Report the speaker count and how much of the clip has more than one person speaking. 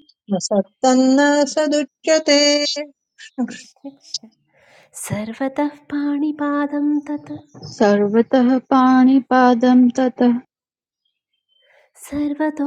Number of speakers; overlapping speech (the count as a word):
three, no overlap